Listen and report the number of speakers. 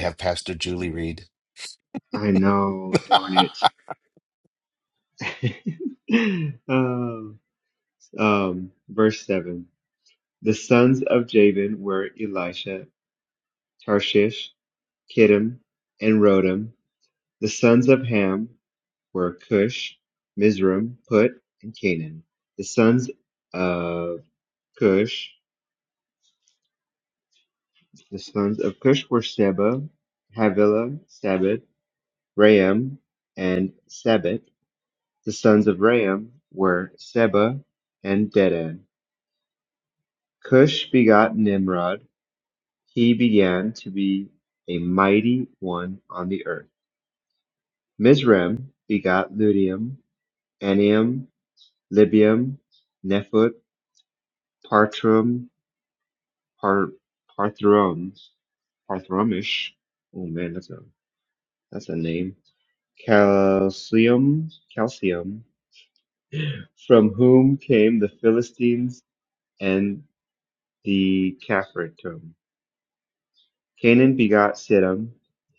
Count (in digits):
2